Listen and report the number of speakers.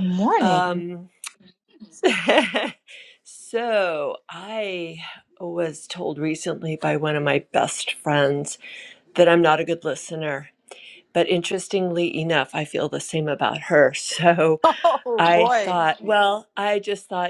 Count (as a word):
two